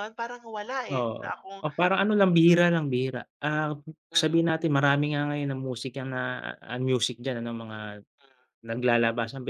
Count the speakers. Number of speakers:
two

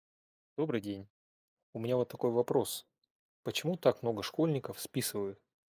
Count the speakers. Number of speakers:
one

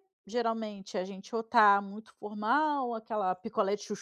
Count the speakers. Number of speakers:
one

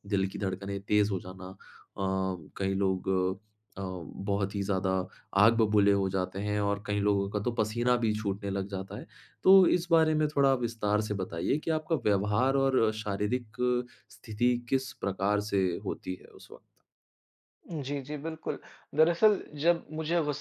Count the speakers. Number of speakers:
two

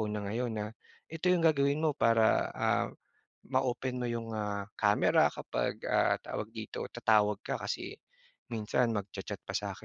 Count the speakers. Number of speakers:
one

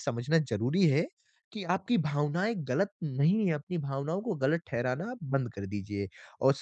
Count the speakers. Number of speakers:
one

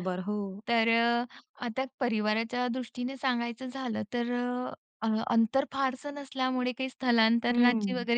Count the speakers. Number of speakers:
two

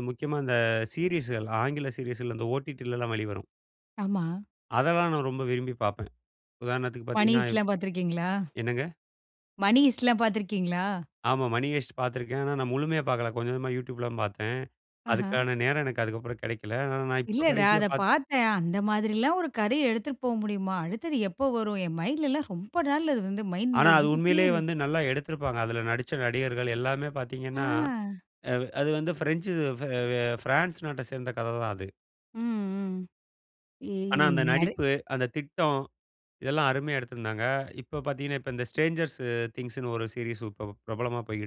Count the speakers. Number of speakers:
two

